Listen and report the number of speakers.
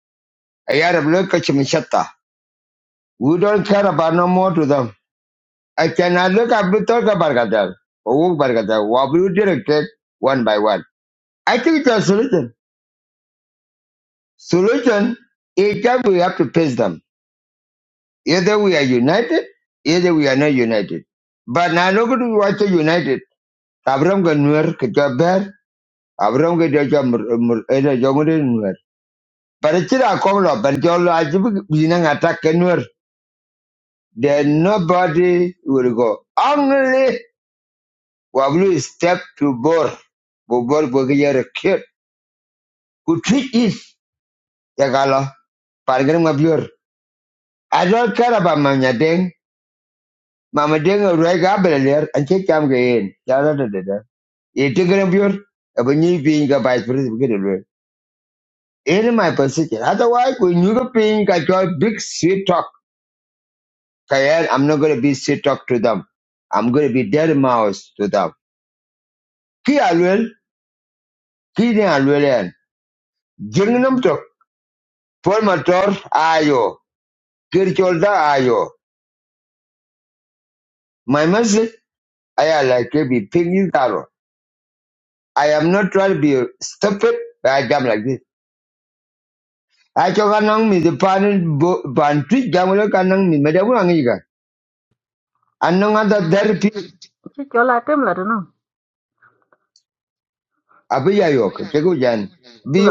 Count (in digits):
2